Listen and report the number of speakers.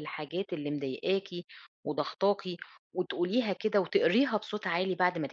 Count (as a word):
one